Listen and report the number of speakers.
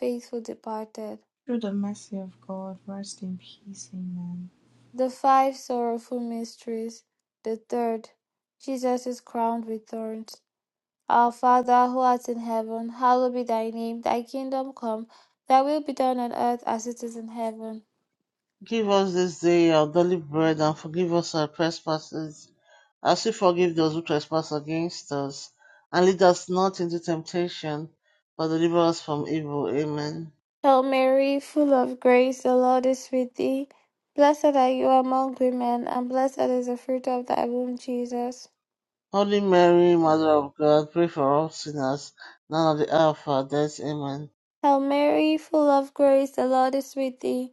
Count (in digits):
3